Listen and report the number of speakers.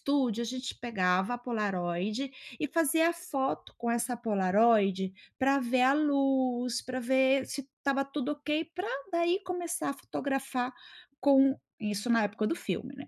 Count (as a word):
one